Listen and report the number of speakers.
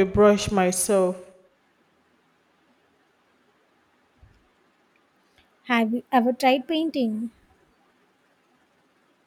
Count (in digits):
2